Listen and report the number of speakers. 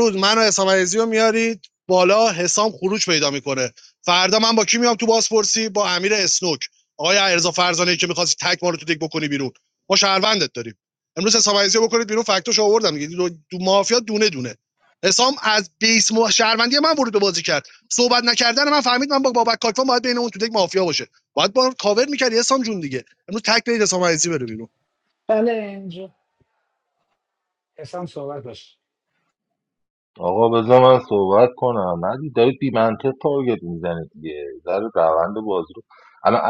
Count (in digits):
3